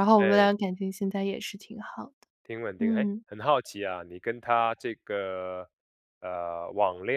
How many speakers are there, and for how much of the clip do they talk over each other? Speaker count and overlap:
2, about 10%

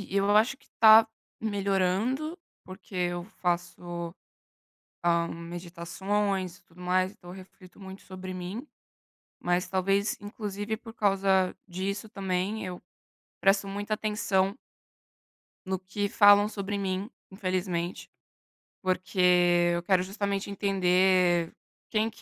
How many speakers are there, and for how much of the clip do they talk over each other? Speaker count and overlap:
1, no overlap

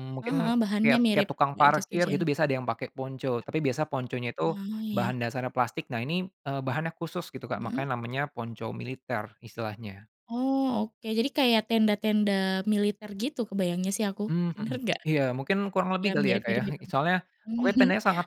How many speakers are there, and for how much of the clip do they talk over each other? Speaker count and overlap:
2, about 21%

